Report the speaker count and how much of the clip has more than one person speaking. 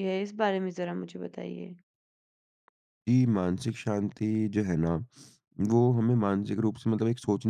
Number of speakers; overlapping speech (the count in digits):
2, no overlap